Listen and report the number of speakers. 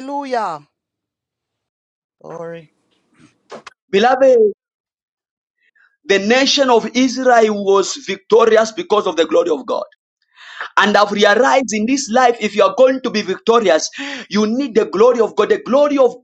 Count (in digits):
2